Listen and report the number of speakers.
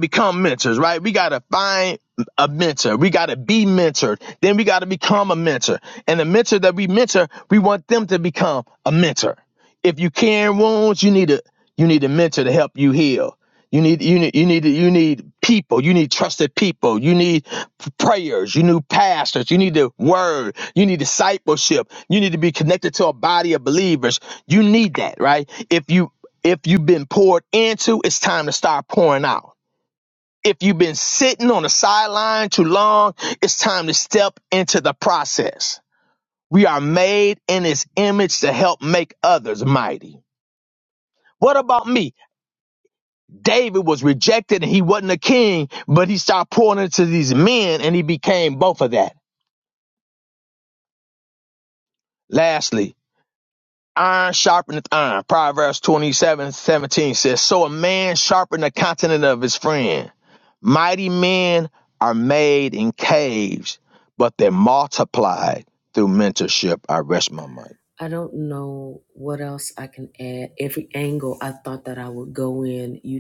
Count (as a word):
two